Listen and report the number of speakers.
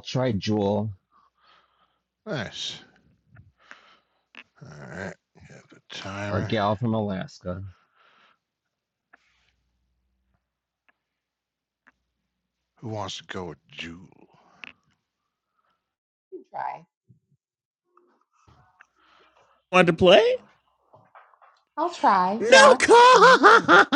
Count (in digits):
4